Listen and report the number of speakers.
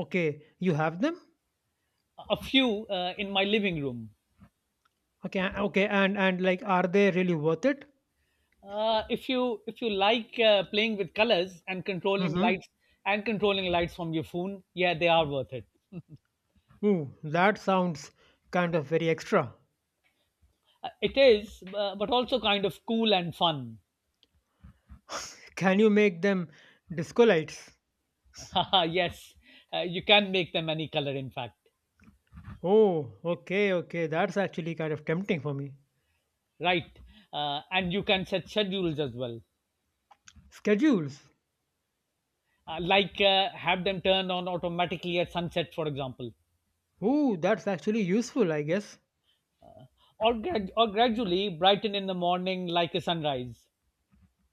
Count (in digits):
2